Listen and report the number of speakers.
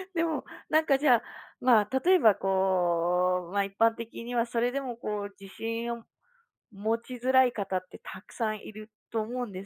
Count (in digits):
1